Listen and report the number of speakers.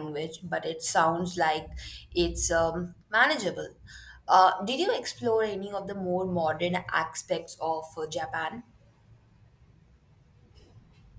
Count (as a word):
one